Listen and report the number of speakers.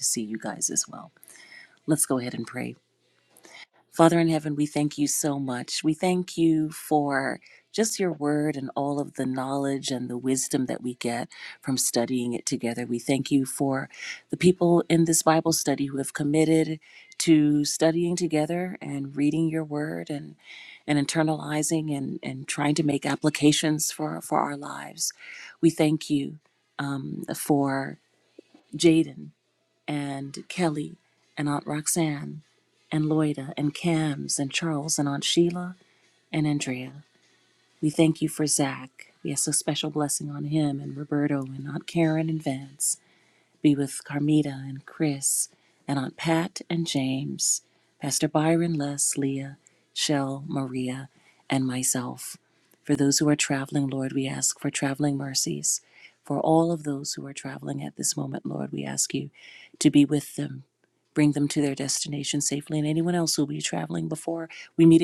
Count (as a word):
one